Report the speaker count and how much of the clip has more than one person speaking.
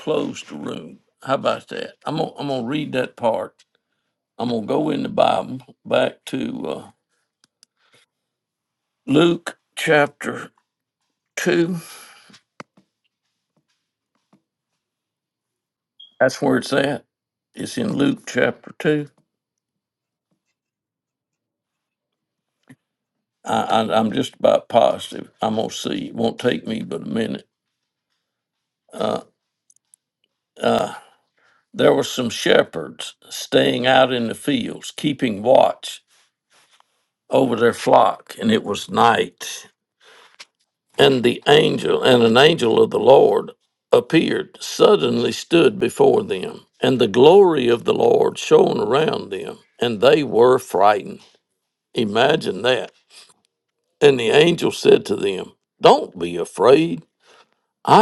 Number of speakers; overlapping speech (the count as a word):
one, no overlap